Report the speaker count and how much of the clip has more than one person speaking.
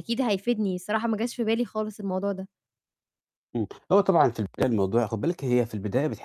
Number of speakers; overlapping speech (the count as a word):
two, no overlap